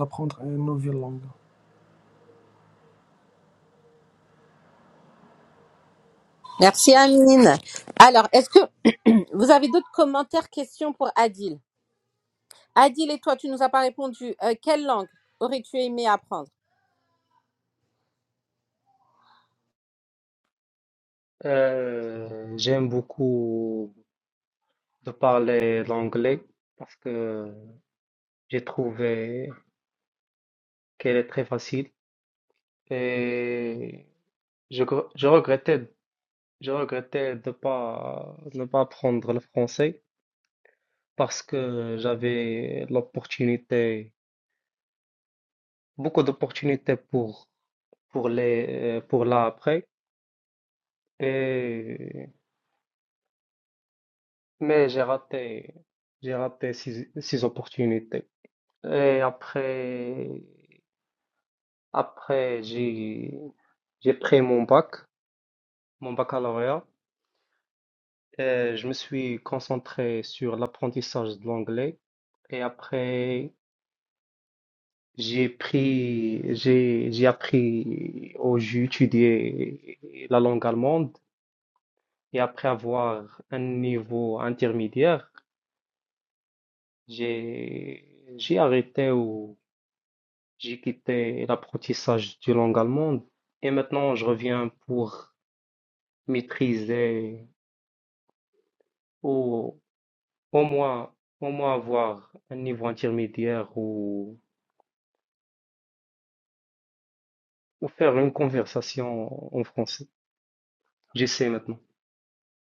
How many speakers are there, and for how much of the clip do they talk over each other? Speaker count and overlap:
three, no overlap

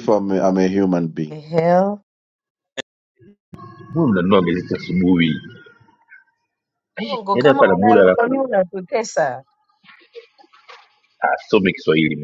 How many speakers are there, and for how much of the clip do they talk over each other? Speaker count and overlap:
three, about 9%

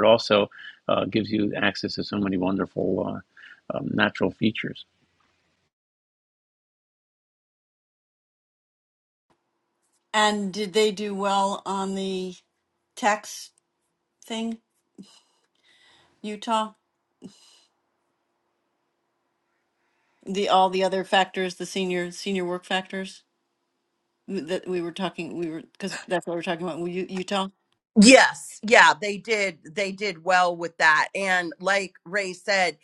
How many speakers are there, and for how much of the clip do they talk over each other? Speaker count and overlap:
three, no overlap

